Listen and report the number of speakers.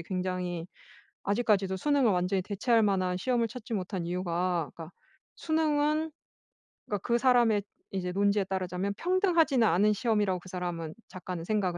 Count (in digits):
1